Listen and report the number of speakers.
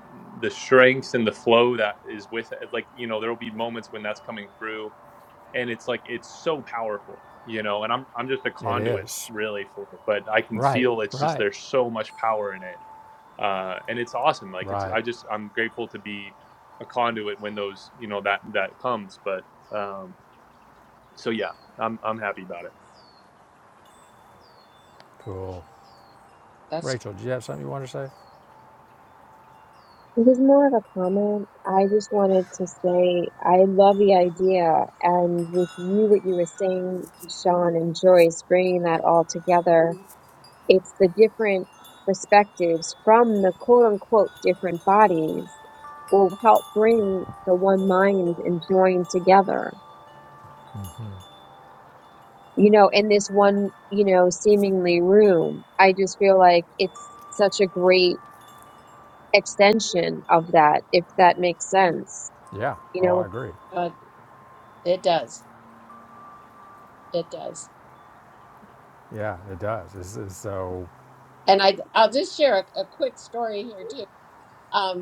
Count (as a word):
four